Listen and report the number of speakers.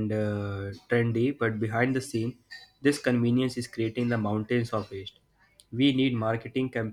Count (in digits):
1